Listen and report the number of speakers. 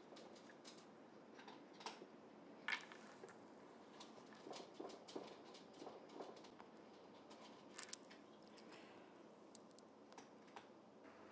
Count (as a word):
zero